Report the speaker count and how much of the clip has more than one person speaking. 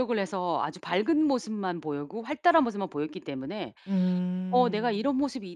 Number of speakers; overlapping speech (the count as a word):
two, about 7%